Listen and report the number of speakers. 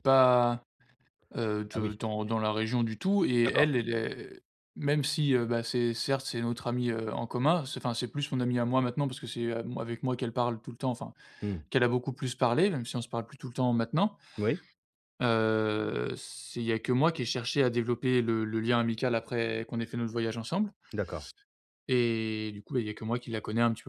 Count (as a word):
two